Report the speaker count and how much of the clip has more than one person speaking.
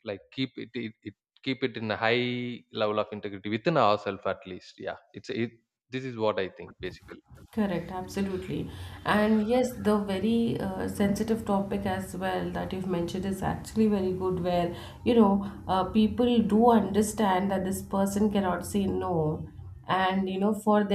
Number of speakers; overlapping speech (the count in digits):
2, no overlap